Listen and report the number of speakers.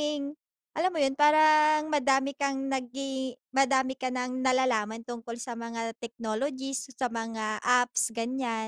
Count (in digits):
1